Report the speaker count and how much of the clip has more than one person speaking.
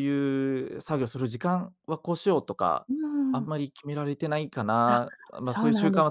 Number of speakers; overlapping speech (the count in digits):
2, about 14%